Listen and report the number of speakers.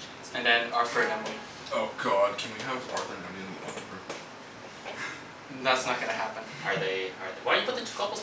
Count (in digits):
3